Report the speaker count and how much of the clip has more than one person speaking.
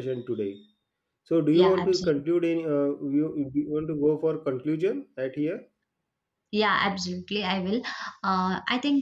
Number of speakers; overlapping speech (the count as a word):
two, about 8%